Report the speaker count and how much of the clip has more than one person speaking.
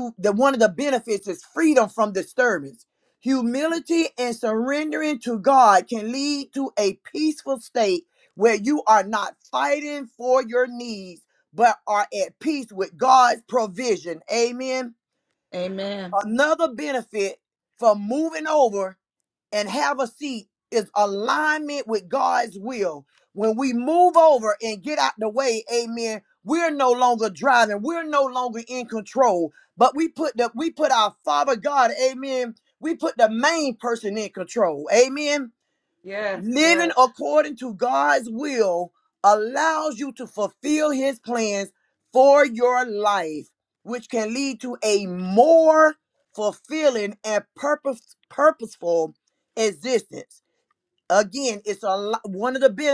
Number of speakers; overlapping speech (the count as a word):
two, about 1%